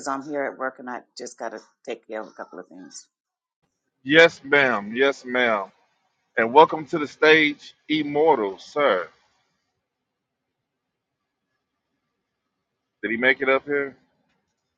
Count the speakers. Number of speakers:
two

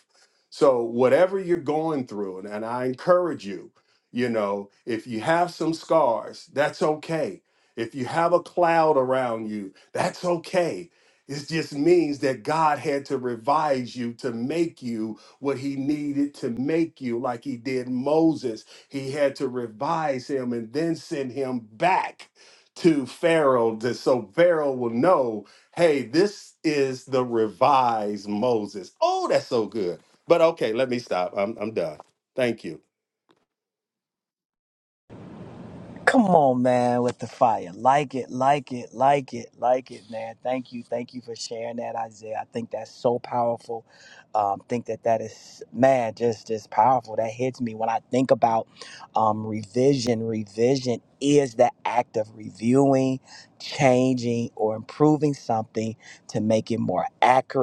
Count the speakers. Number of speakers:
two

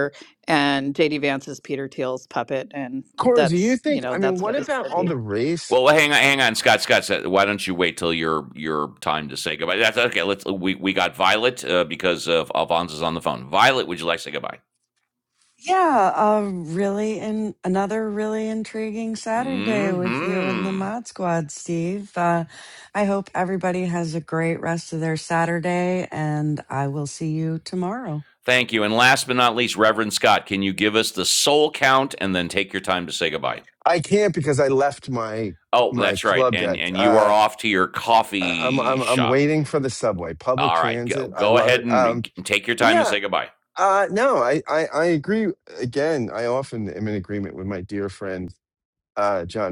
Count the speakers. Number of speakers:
four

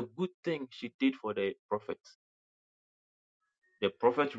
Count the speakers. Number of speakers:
one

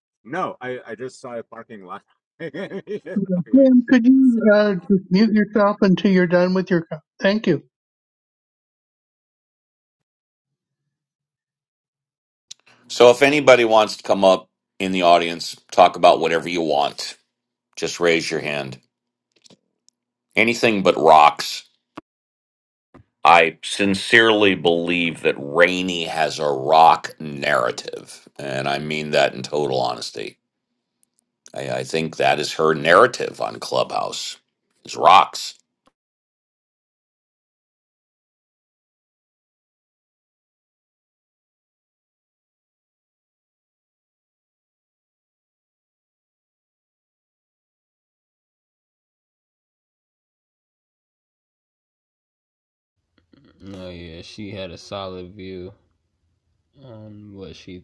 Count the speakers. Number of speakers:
four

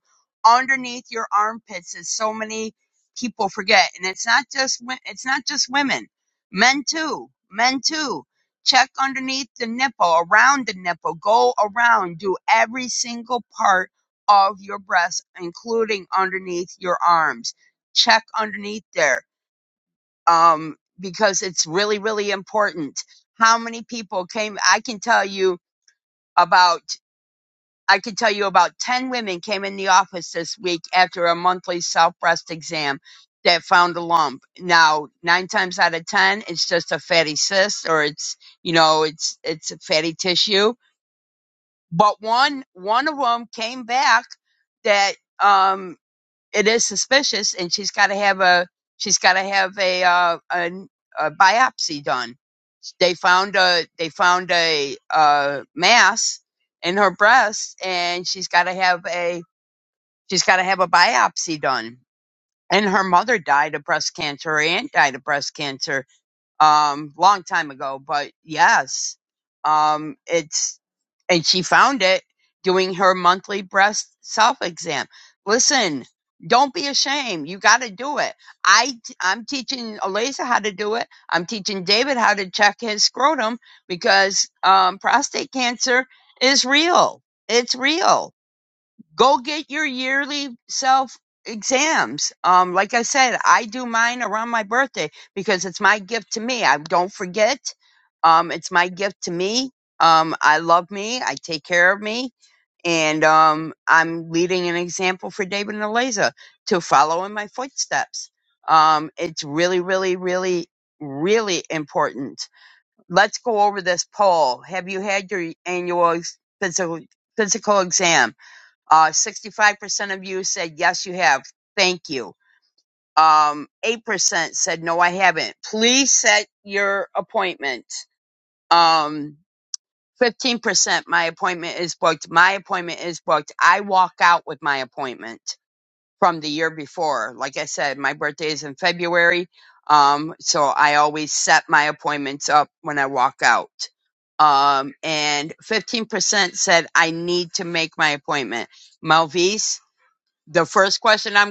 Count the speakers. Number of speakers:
one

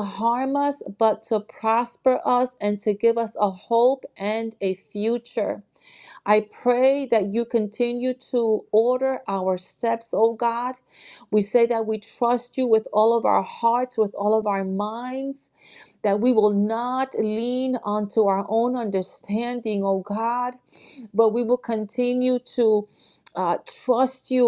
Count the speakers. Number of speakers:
one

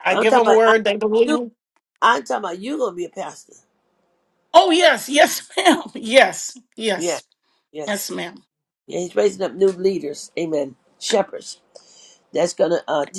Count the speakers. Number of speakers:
two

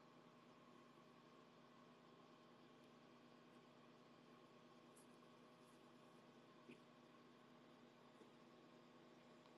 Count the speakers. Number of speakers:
zero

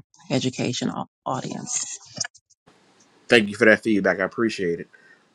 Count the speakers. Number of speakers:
two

